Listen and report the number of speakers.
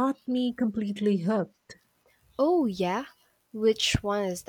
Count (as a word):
two